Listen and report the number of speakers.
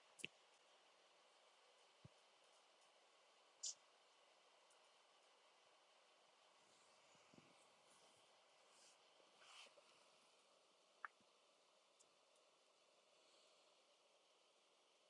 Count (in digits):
0